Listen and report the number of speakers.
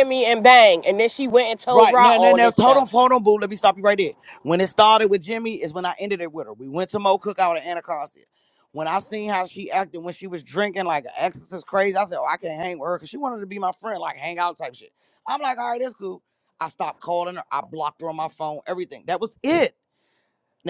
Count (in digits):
2